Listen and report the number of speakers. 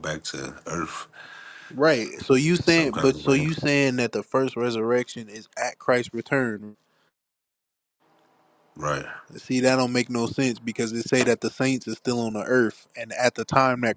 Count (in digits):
2